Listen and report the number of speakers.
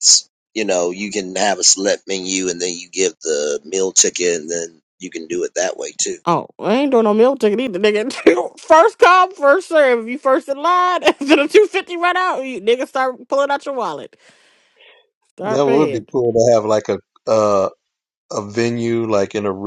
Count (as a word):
three